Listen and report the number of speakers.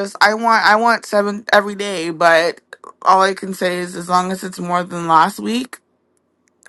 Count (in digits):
1